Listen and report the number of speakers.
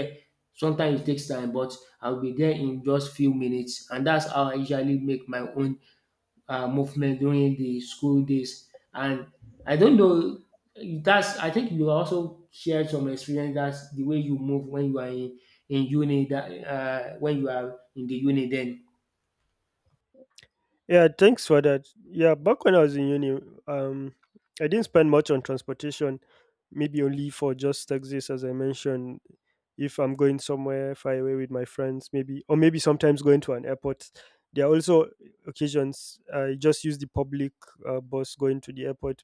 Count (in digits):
2